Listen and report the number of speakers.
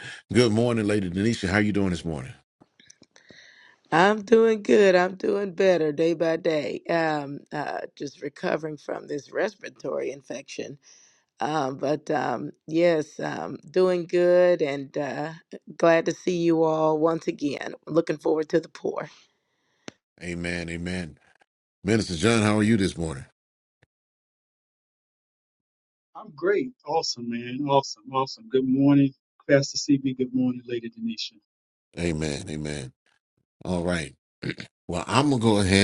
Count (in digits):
3